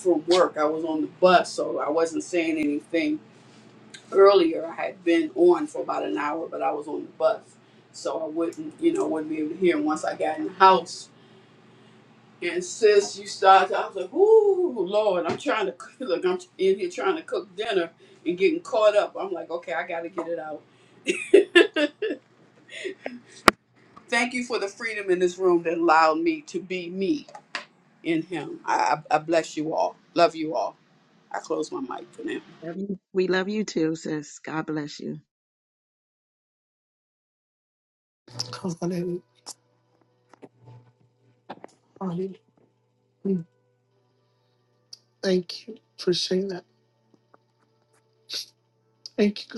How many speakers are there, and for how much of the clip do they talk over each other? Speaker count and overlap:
three, no overlap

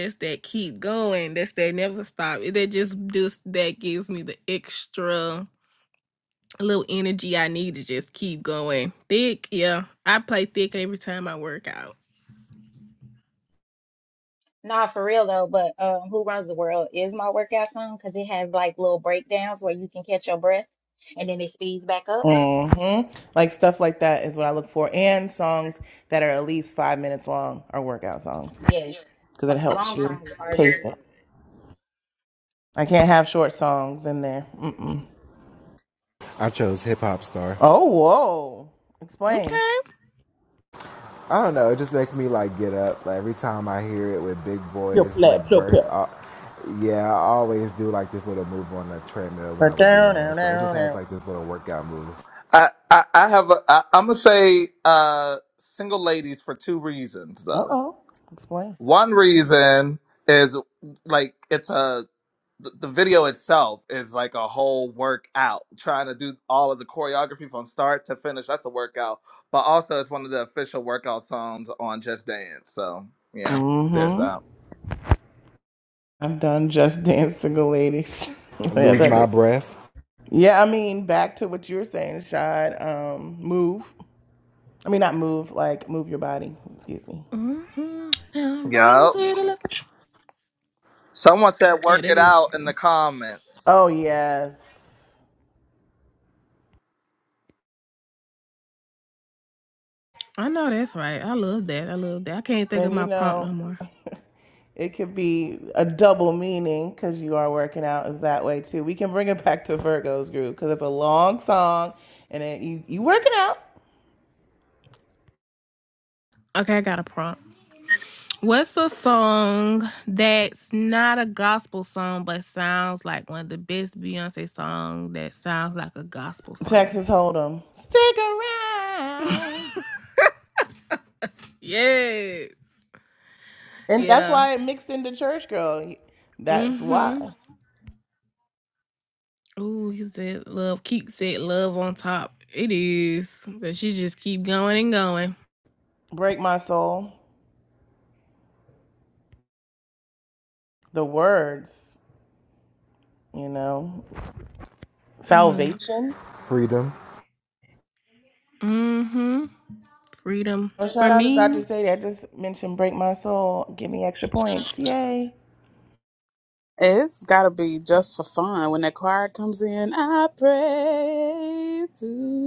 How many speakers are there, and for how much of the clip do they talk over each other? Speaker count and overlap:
six, about 5%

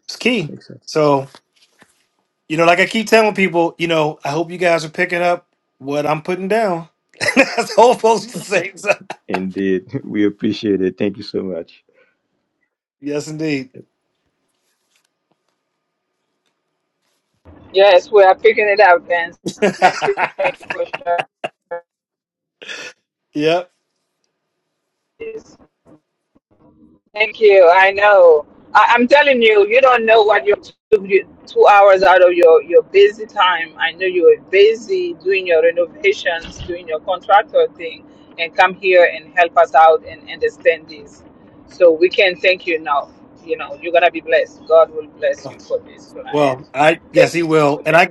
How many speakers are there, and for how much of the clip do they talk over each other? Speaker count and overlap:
three, about 1%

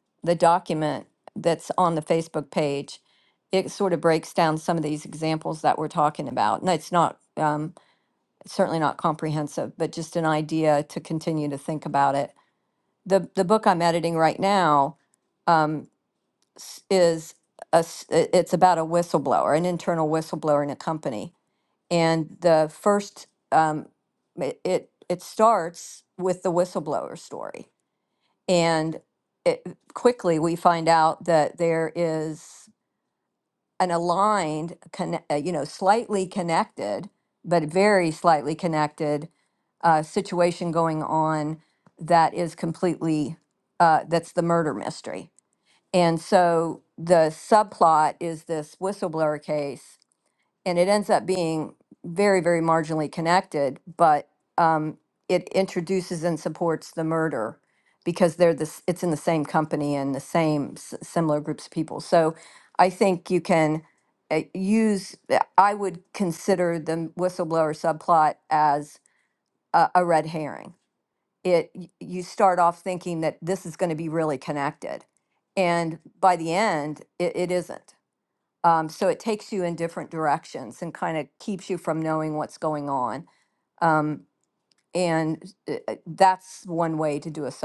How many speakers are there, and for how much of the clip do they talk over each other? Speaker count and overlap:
one, no overlap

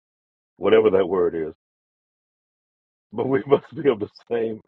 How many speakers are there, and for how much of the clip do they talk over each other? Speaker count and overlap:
one, no overlap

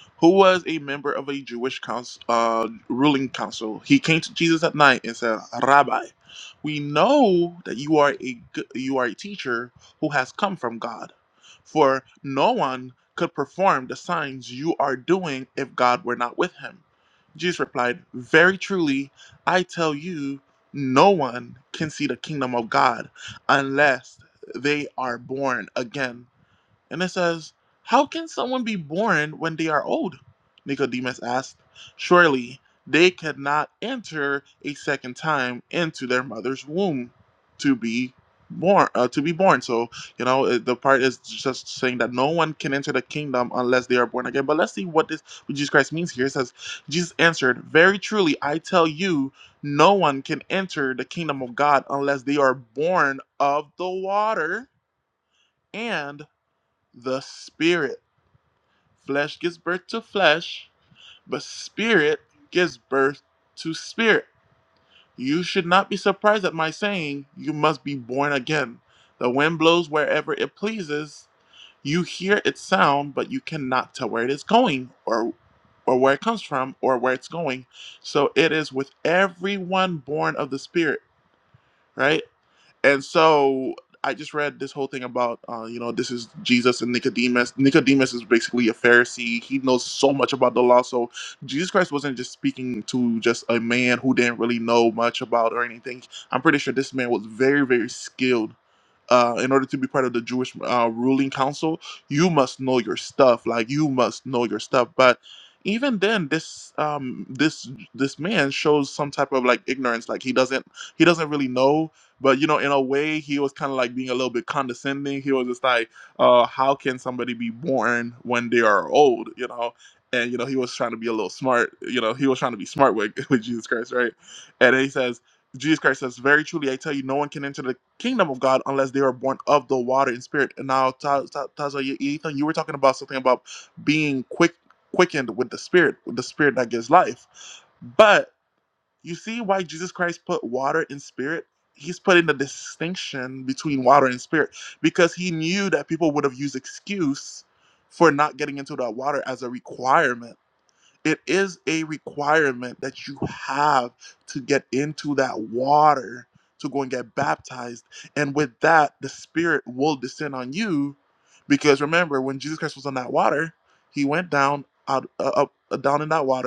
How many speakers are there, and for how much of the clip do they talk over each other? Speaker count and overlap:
one, no overlap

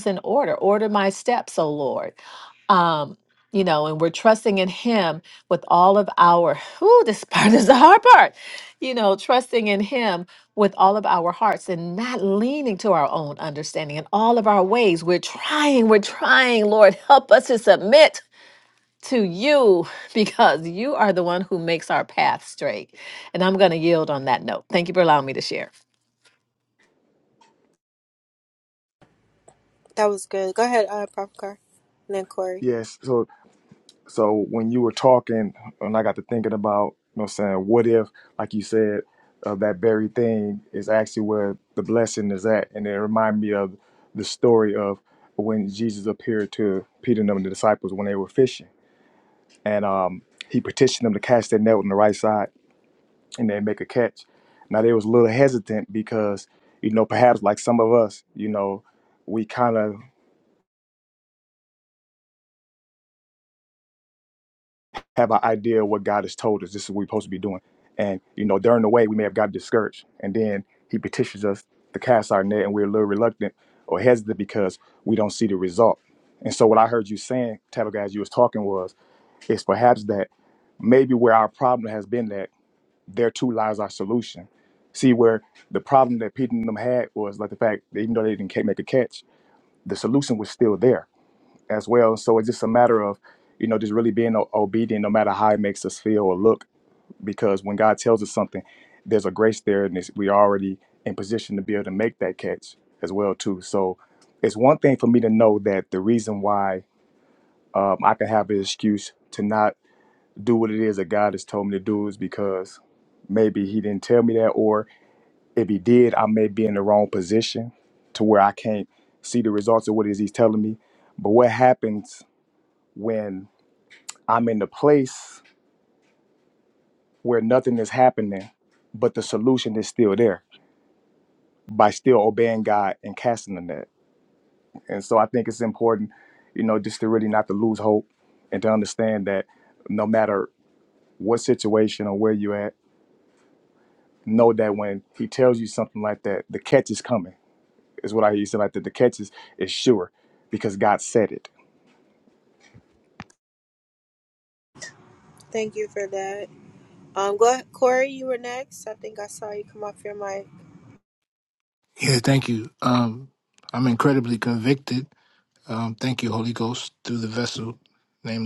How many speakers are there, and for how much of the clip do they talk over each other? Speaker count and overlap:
four, no overlap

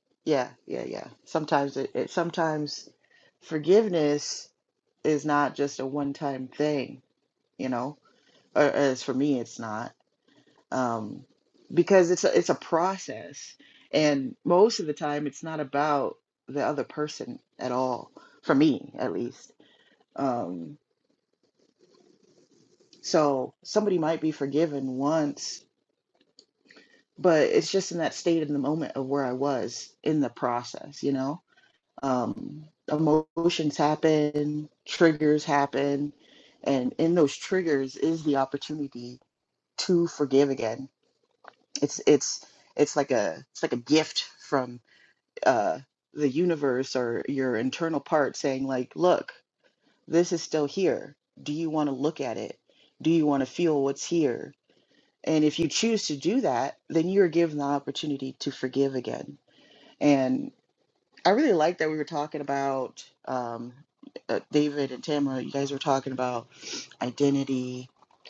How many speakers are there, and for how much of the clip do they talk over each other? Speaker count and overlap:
one, no overlap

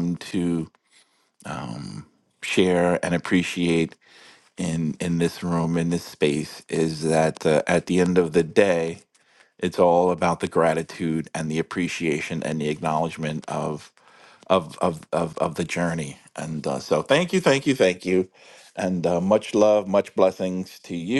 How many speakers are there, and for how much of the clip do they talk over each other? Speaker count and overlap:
one, no overlap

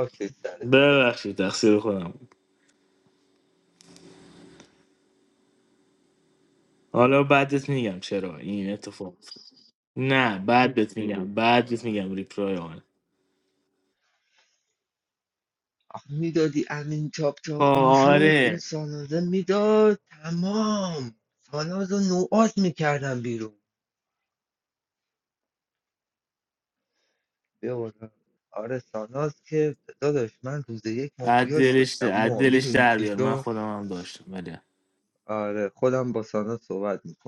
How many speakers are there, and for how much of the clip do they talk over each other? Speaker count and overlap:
two, about 9%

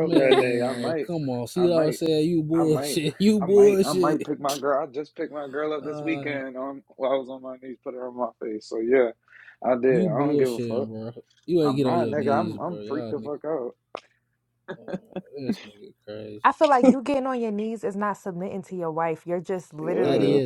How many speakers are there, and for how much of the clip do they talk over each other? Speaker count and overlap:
three, about 33%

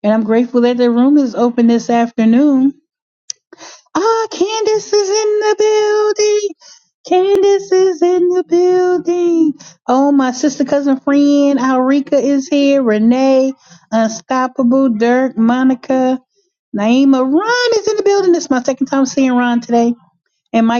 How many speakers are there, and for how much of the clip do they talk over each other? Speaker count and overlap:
one, no overlap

